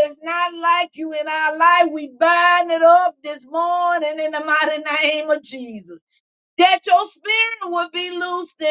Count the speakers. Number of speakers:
one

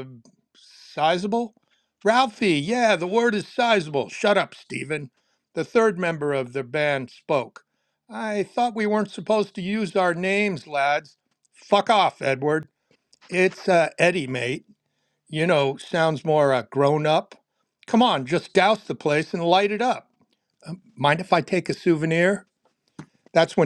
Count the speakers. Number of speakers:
one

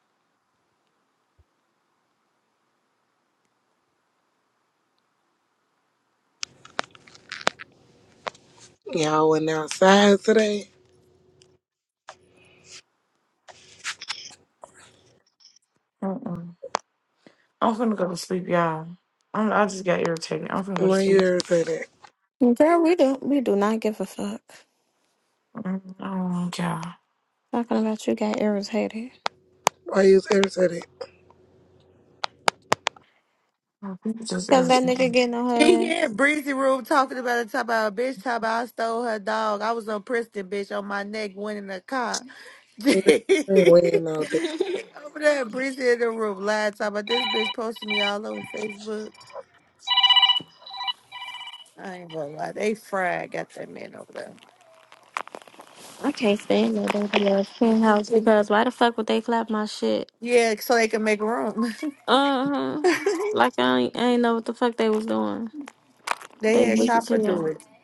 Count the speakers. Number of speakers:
four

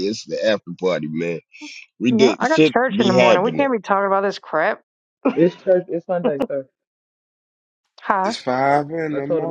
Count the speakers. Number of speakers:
four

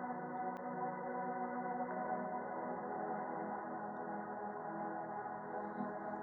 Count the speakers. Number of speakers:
zero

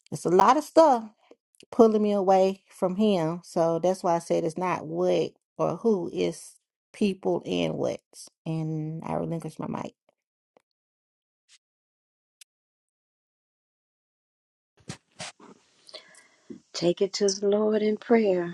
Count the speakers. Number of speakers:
two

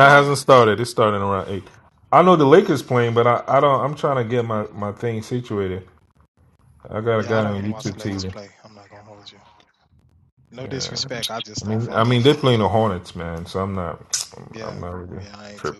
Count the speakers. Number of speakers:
two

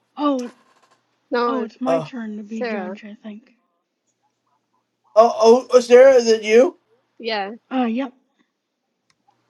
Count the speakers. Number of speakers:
three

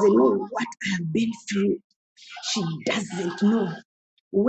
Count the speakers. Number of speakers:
one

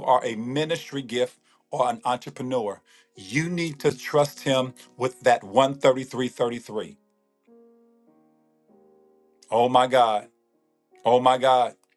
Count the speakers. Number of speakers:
one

